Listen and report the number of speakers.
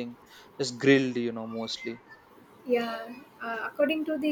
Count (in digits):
2